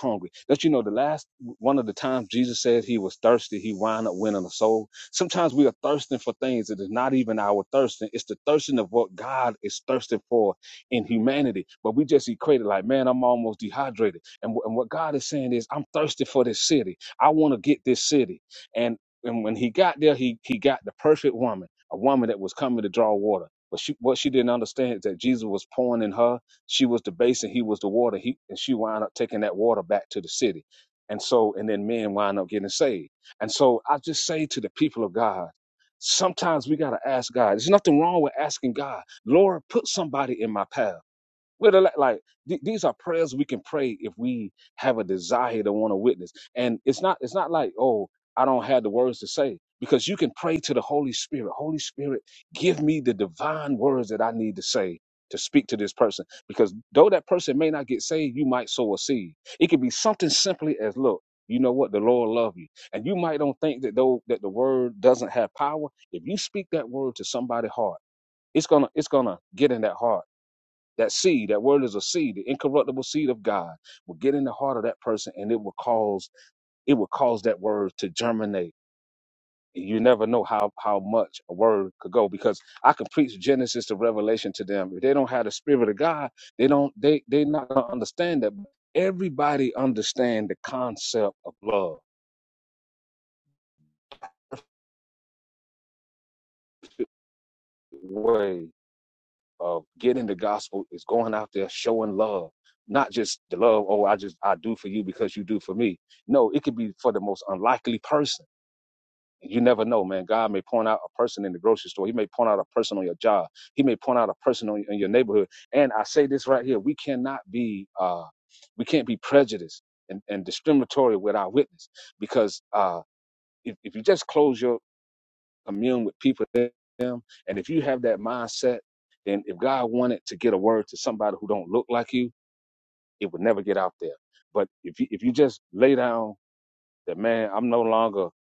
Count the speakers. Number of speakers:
1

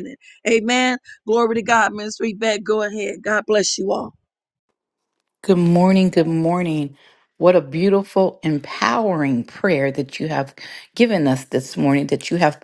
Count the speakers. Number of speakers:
2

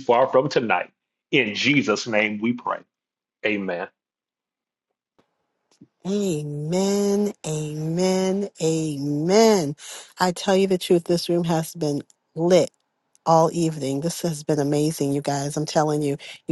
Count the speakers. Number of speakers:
2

